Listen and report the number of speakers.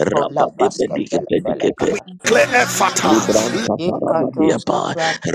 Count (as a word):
three